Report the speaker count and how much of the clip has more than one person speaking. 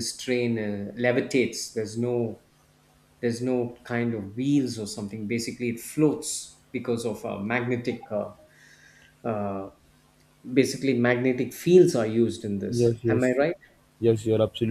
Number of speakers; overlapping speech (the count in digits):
2, about 5%